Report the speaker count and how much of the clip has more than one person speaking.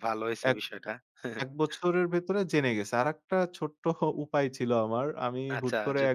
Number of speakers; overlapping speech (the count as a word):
two, about 13%